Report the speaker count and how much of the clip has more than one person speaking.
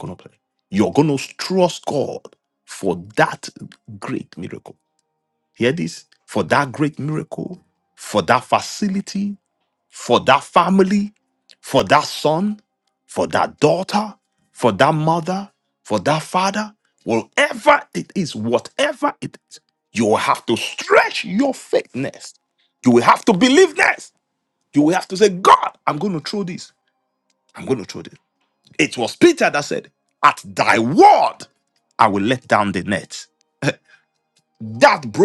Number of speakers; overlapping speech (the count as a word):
one, no overlap